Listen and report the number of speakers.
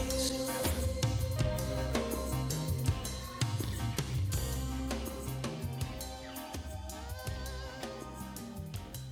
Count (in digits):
0